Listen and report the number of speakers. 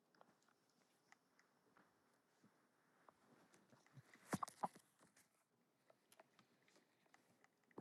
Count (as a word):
zero